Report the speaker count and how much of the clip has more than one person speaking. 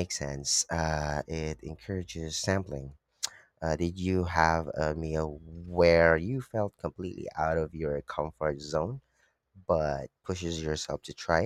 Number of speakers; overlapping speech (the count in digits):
1, no overlap